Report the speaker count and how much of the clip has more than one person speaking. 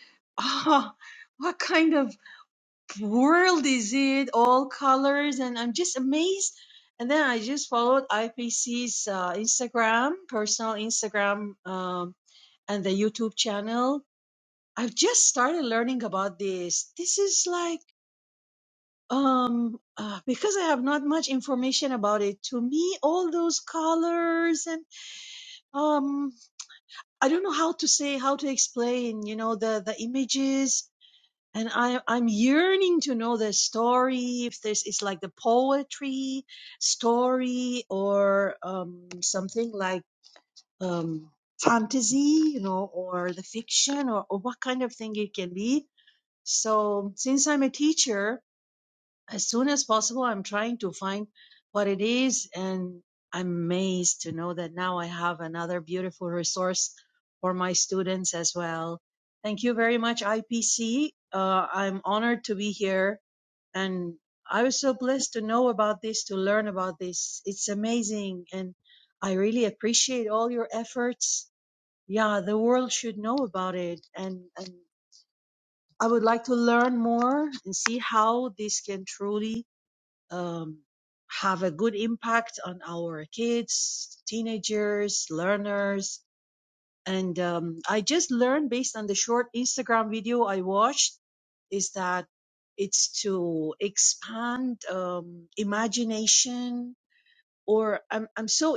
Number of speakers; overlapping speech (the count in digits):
1, no overlap